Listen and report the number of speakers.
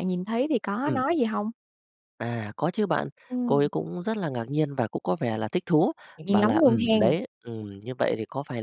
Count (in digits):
2